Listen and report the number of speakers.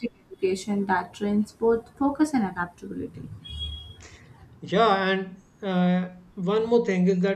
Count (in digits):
2